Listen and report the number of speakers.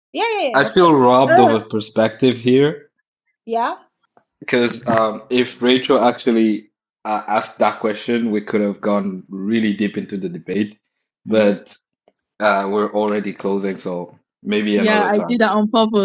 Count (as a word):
three